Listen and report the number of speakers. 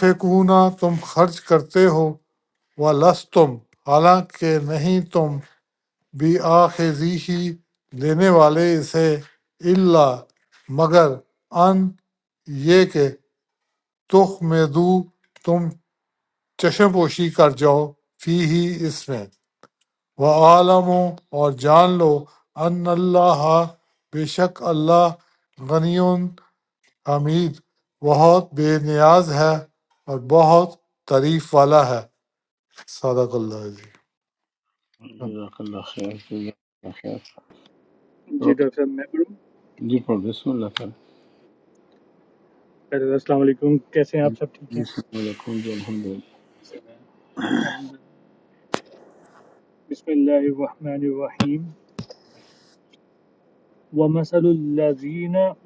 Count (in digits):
3